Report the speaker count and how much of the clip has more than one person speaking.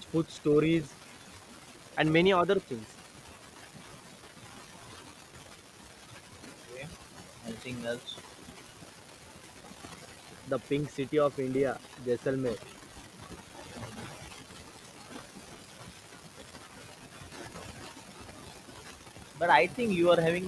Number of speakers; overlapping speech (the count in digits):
2, no overlap